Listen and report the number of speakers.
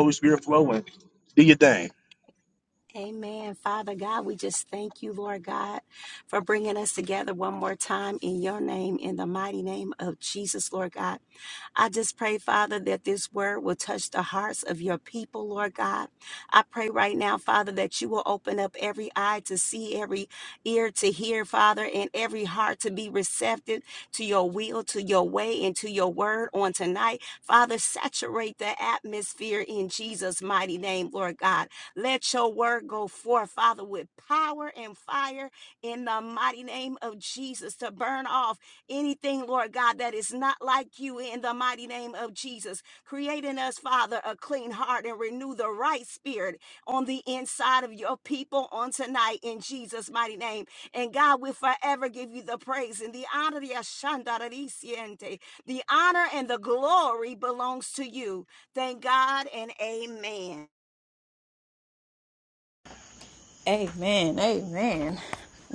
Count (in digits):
3